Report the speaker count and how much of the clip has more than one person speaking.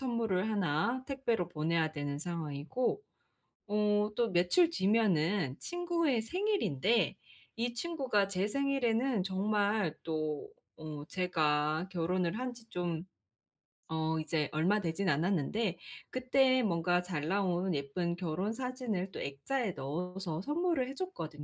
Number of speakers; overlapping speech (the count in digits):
1, no overlap